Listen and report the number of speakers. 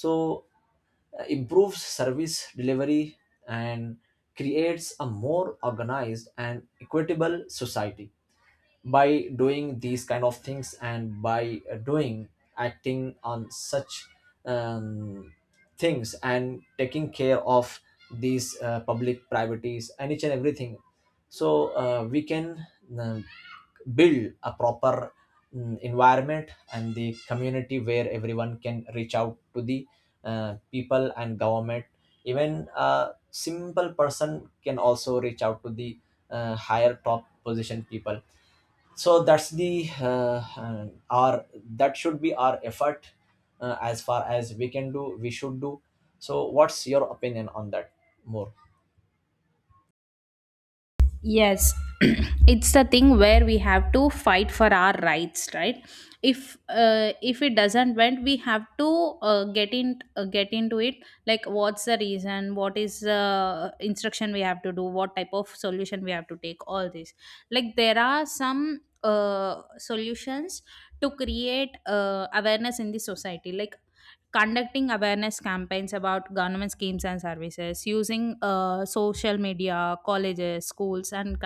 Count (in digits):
2